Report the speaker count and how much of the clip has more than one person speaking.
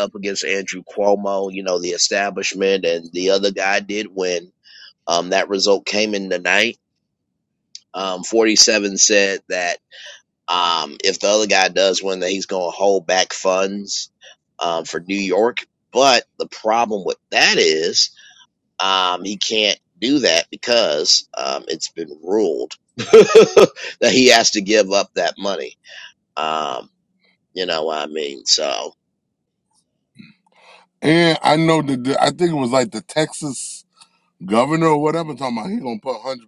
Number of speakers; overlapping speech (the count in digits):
2, no overlap